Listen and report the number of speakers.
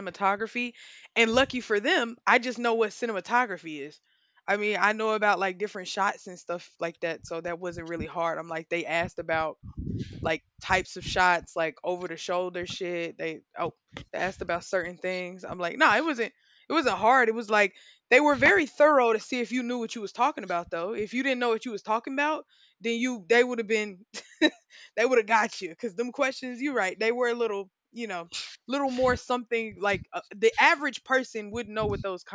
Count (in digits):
1